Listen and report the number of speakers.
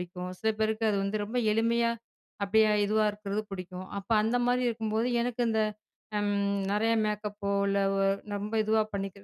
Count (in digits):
1